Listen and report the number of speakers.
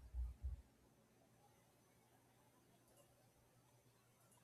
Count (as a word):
zero